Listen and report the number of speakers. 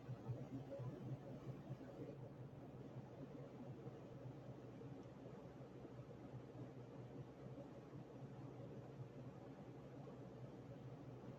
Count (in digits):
0